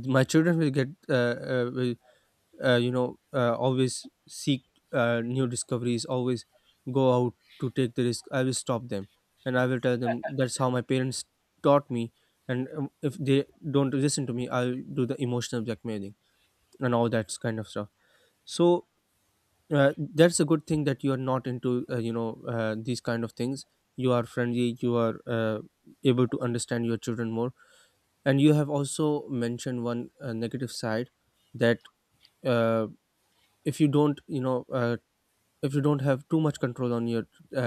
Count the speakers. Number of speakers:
one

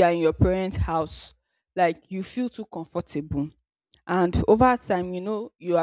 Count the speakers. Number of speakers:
one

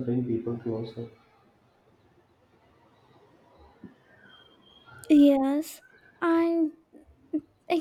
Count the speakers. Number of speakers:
two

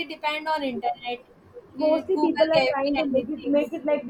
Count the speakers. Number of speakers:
two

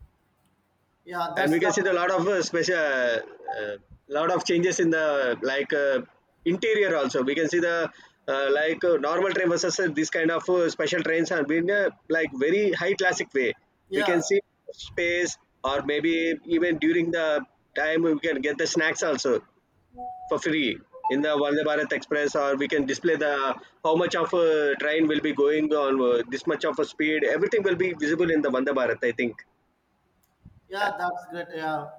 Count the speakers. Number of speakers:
two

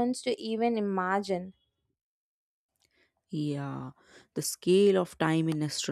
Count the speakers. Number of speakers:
two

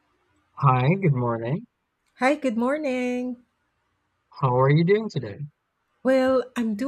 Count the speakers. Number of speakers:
two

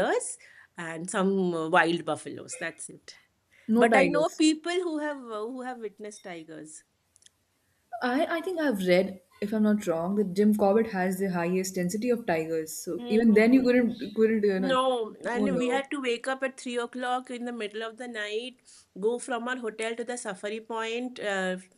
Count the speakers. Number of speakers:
two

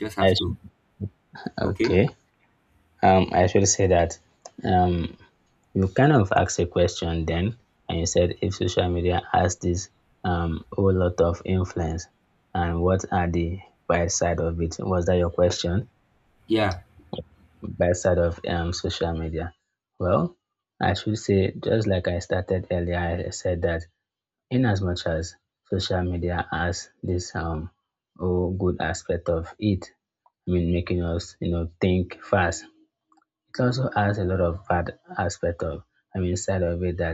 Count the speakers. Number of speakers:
two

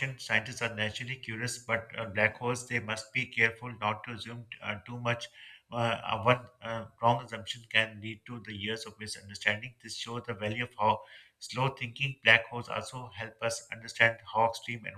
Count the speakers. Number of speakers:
one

